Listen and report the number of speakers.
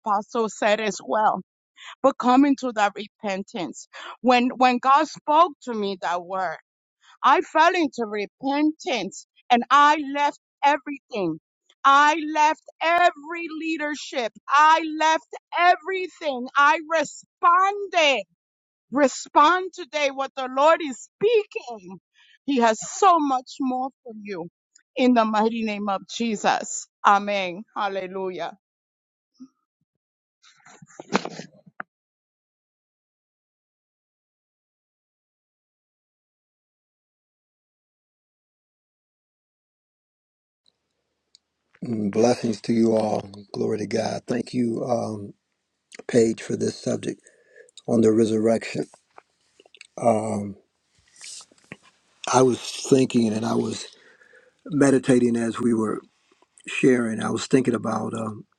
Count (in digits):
2